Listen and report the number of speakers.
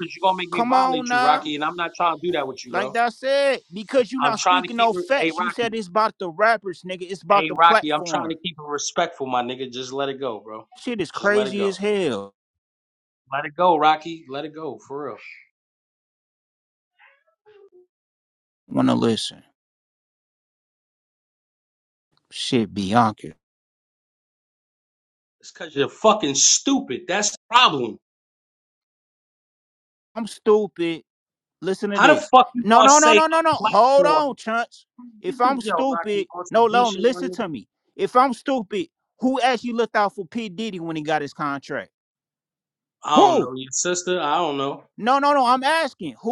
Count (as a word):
two